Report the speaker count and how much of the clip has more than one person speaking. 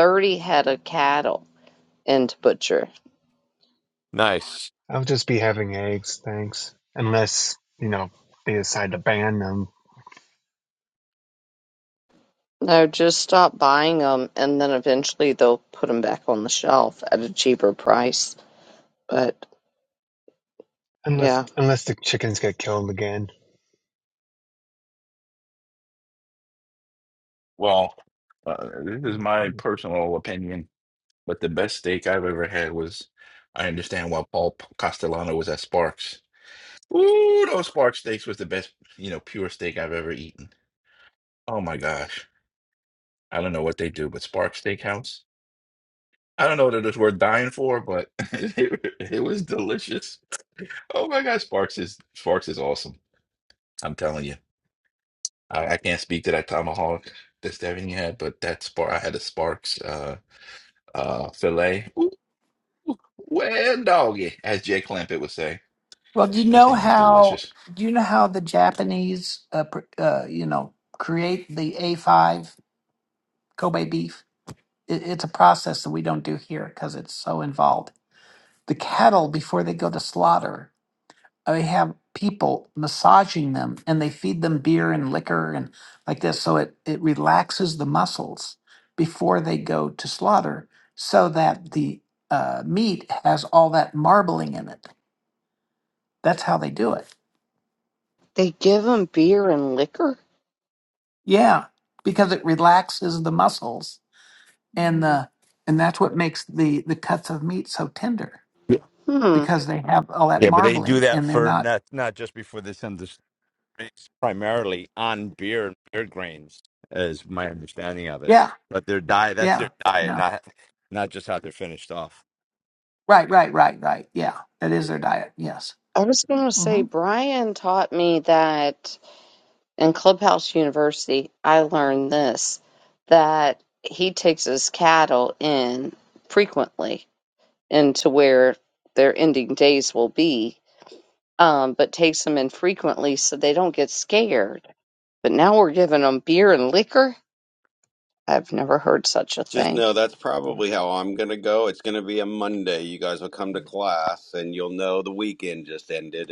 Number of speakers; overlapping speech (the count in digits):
6, about 2%